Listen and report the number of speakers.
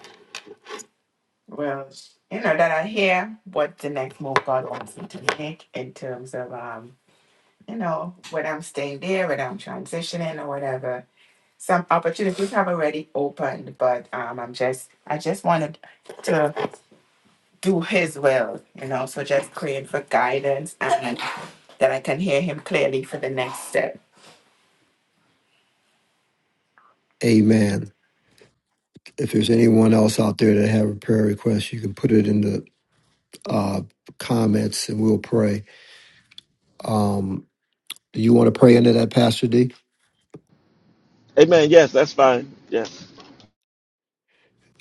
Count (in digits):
3